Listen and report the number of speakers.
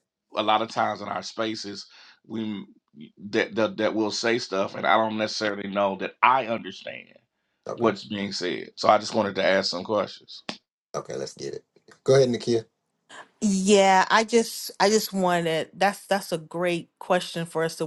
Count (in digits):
3